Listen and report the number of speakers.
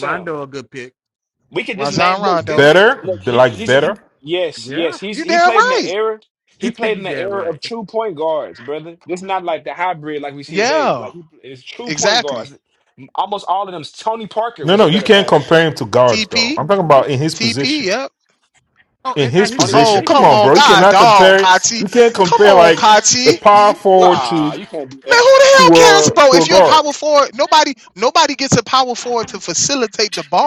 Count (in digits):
4